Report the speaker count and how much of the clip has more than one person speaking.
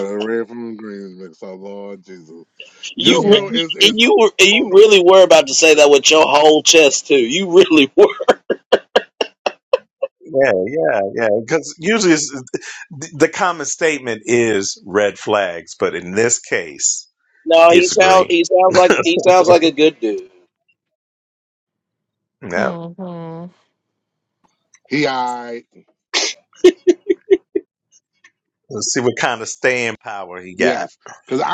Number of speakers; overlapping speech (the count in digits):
4, about 10%